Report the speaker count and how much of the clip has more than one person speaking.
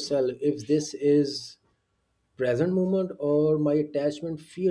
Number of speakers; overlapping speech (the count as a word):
one, no overlap